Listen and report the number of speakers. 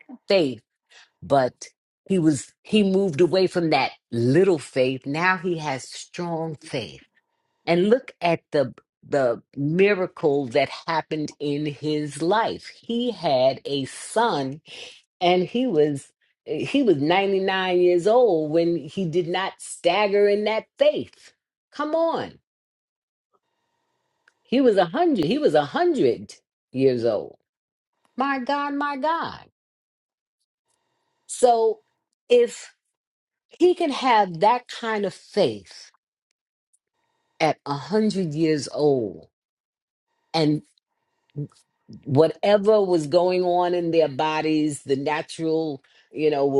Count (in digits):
1